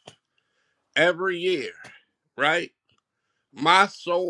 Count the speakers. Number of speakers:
one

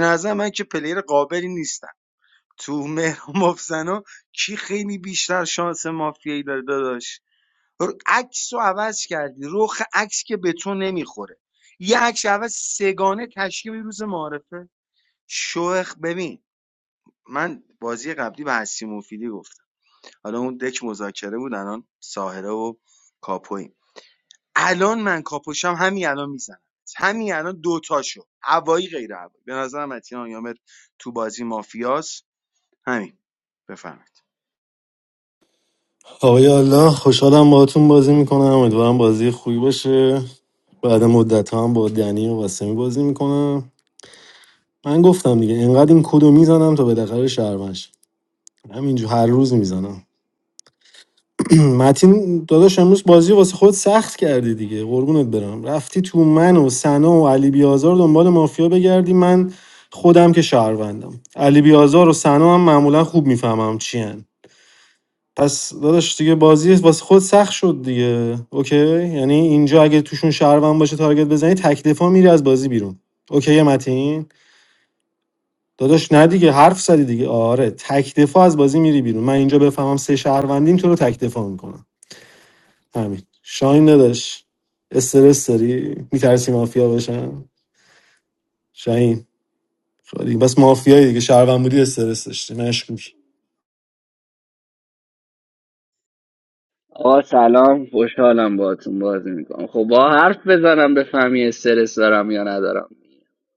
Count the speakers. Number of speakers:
three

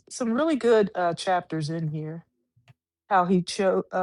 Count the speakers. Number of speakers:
one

